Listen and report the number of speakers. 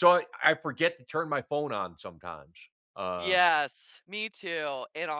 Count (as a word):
two